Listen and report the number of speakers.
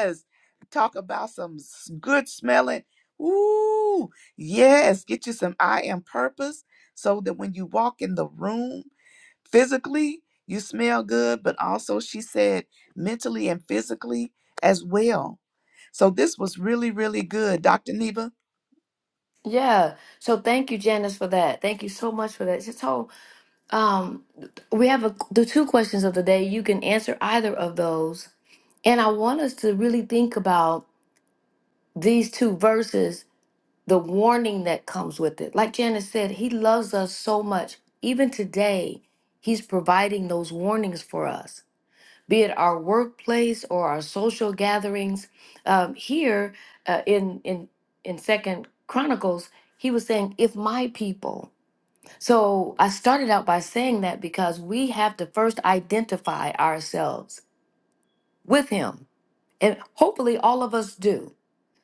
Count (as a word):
two